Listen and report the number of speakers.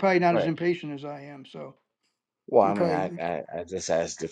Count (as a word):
two